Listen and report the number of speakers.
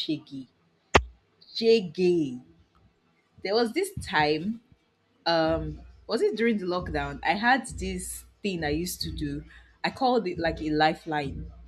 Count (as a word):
one